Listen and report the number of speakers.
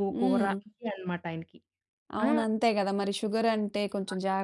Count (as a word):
two